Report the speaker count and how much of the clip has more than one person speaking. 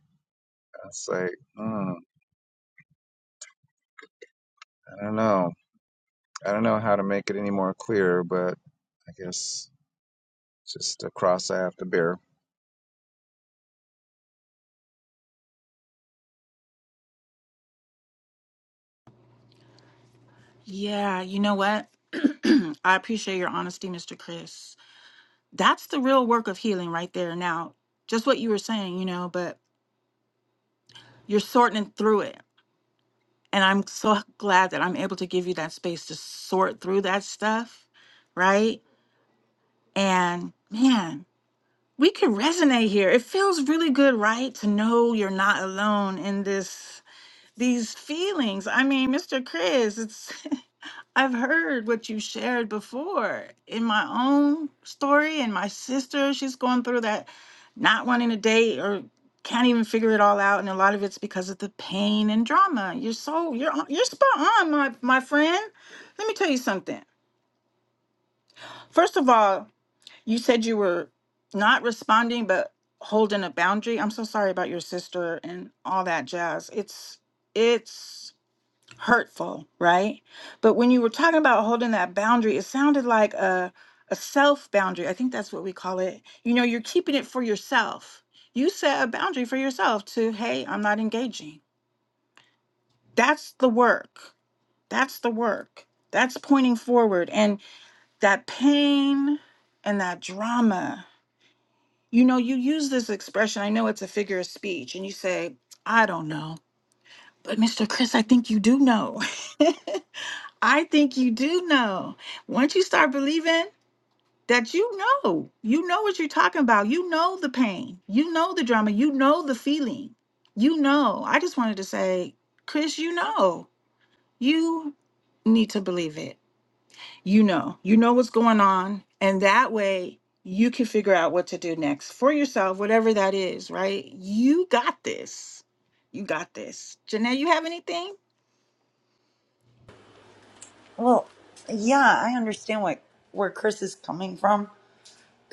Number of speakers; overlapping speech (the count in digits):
3, no overlap